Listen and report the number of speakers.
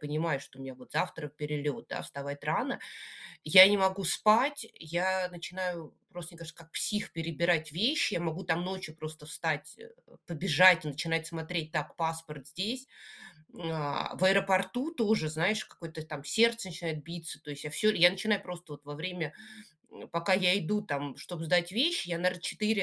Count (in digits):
1